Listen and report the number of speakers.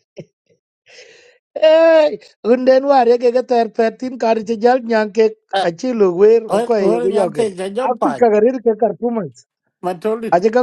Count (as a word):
two